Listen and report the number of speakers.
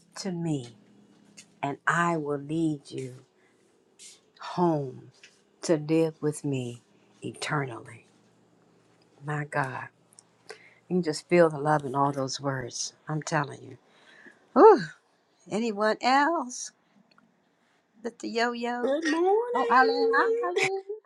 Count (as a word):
two